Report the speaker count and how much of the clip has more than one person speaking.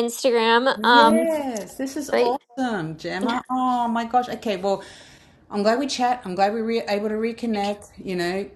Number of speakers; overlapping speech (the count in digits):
2, about 8%